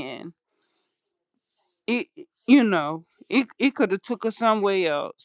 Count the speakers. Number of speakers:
1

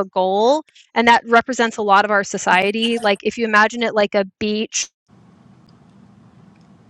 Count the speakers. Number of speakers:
1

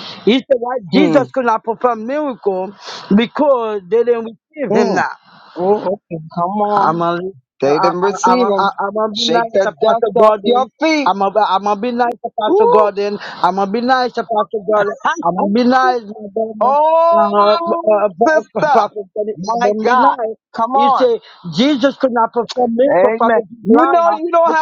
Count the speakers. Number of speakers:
2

